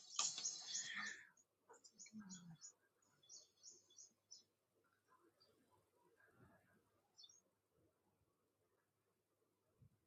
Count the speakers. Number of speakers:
0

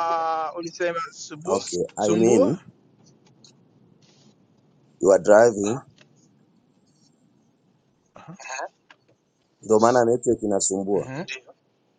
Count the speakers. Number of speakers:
2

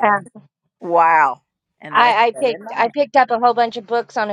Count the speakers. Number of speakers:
2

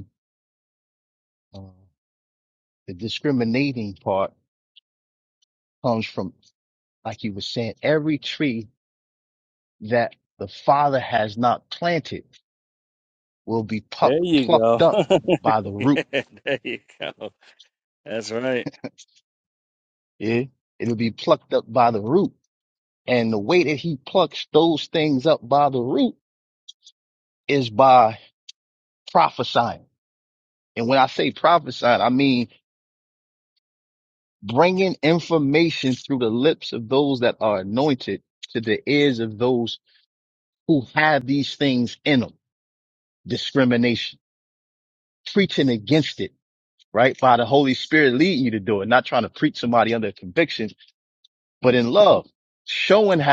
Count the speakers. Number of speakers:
2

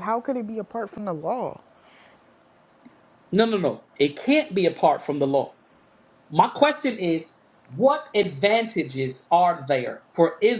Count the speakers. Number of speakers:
2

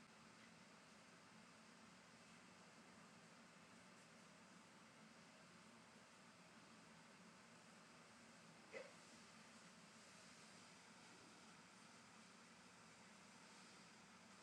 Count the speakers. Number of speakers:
0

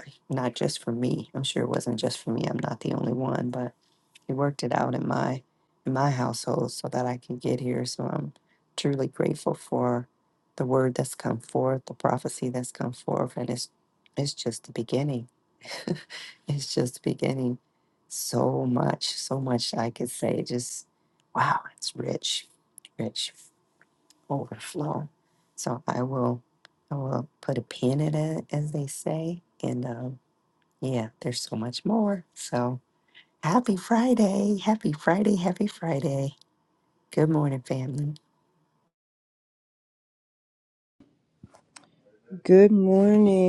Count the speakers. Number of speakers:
2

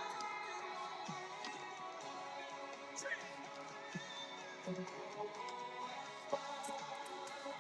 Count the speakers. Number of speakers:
0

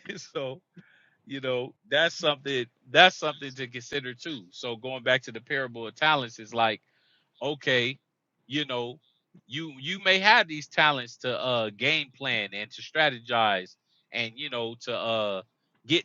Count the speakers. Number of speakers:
1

